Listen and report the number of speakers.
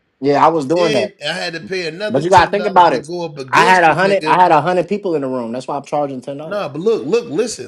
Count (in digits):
2